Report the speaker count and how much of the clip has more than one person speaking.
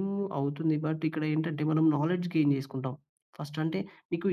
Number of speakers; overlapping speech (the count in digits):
1, no overlap